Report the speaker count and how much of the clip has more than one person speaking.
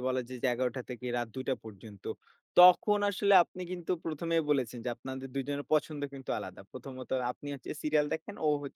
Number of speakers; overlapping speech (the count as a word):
one, no overlap